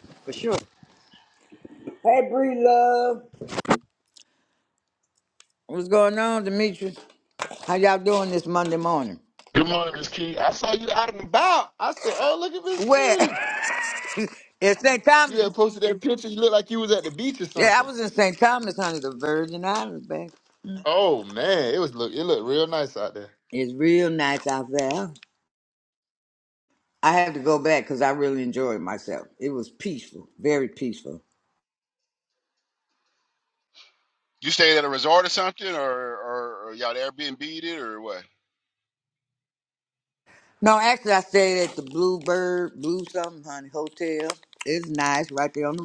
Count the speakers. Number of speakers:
3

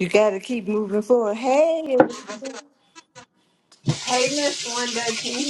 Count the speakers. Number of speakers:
2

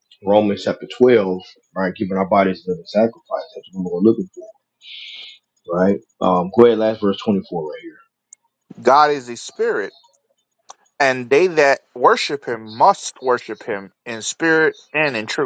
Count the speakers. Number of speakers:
2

